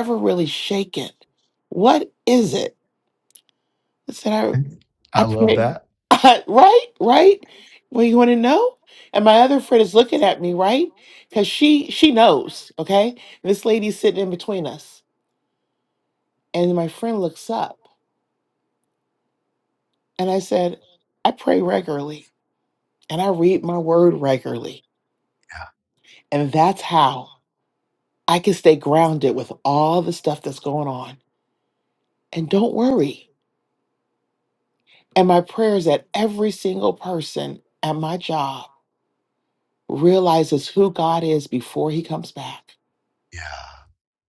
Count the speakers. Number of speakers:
2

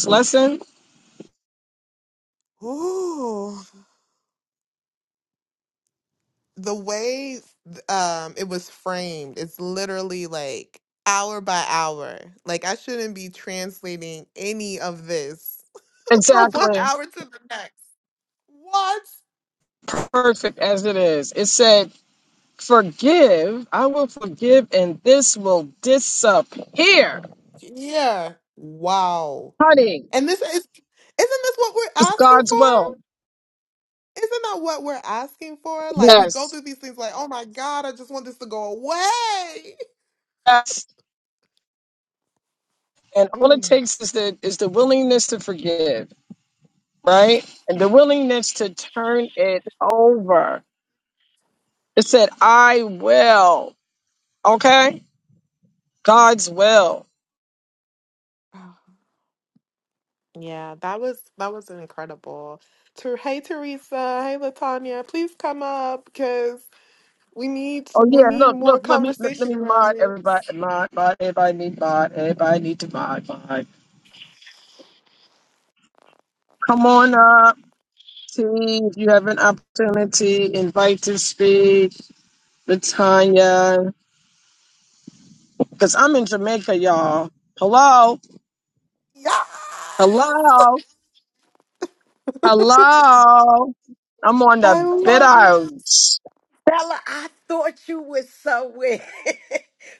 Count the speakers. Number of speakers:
3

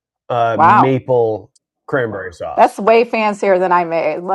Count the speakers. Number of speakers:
2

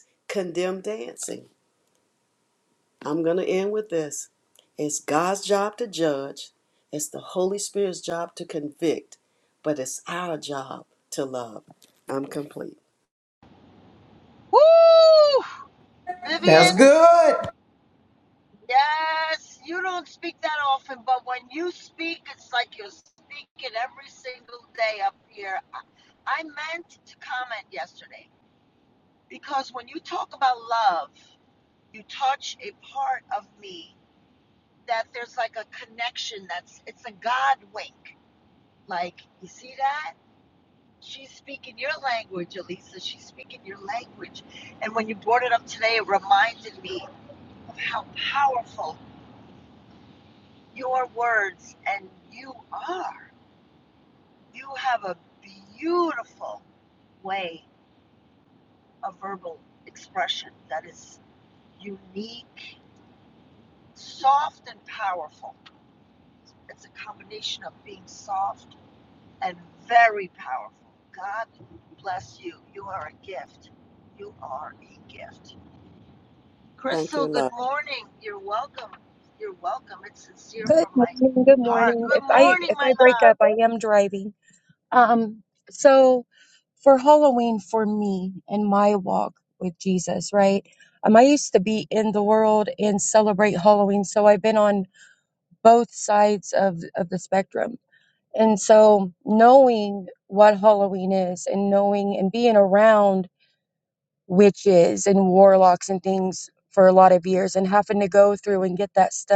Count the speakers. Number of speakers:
4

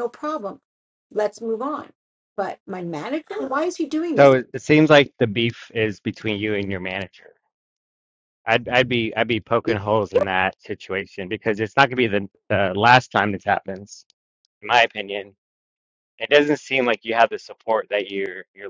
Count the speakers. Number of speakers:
2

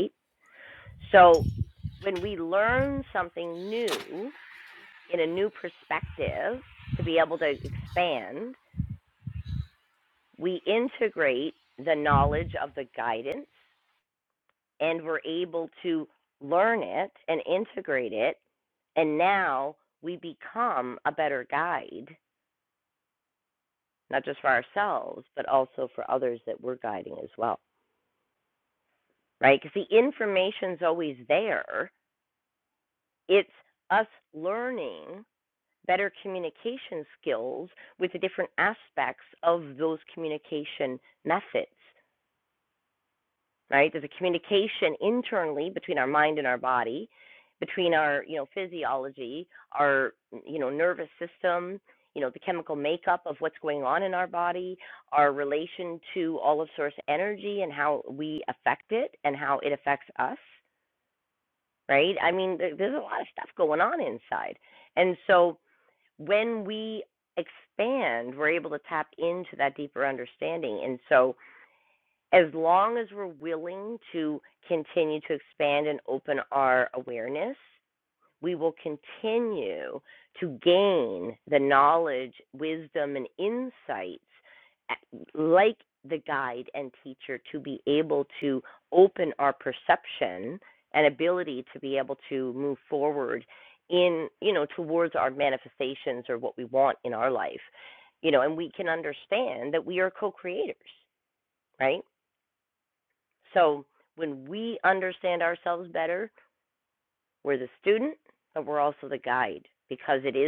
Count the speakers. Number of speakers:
1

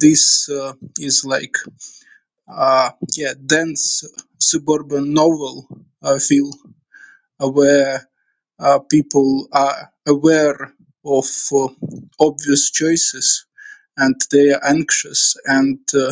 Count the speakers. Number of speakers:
1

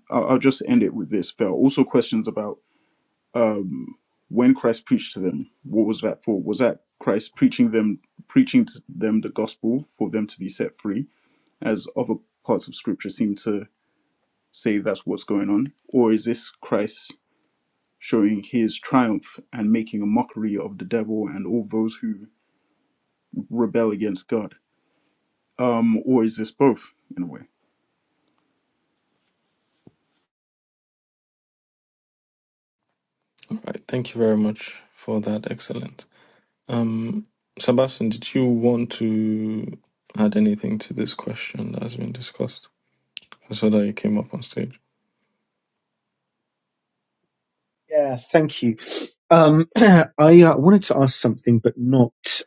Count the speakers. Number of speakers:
3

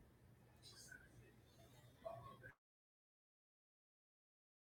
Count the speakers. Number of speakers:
0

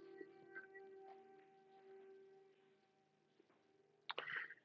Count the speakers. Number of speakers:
0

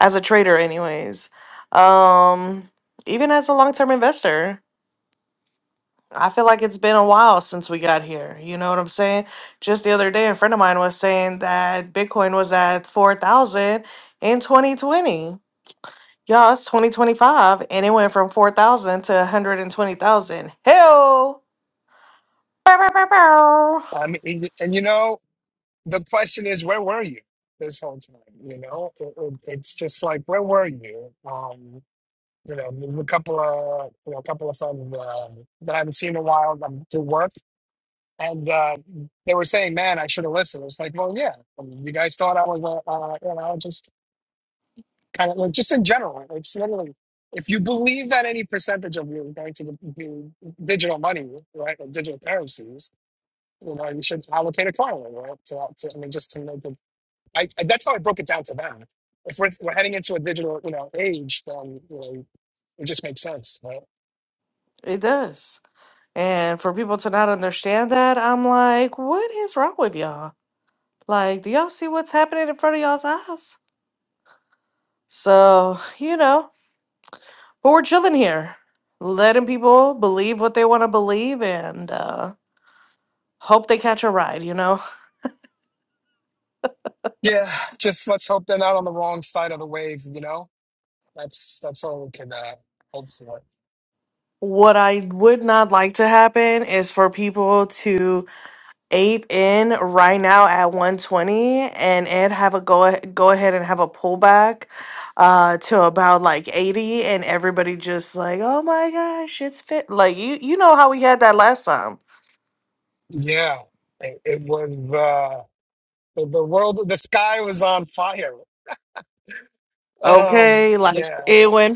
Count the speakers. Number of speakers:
2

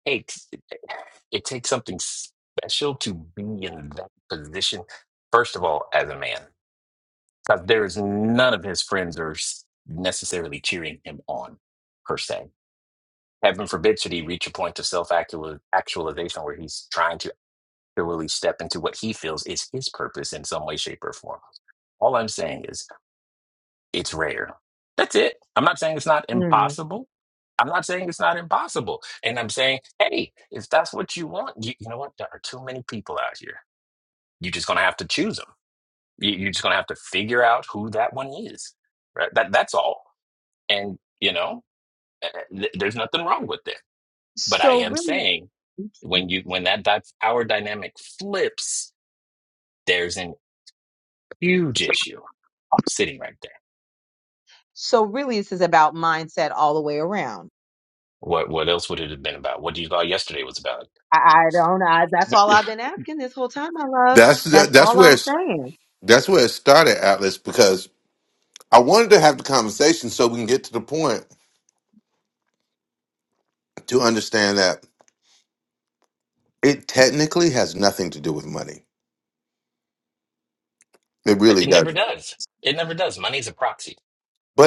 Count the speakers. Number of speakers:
3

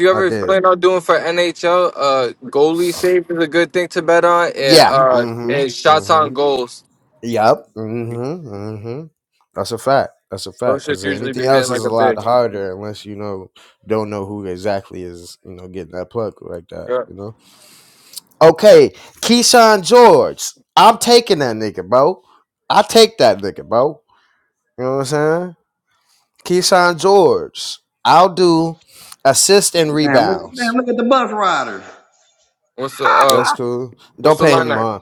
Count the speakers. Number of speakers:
3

